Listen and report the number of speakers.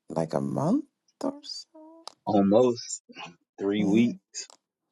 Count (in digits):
2